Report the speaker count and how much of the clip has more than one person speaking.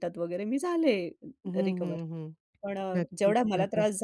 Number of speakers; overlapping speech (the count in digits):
2, about 32%